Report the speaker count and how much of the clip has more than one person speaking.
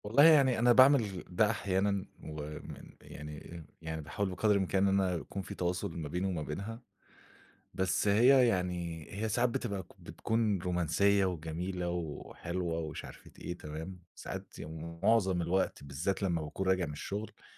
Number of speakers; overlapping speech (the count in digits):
1, no overlap